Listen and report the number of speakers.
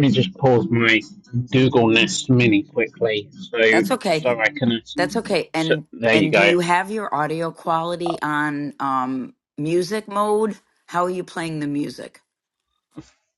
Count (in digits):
2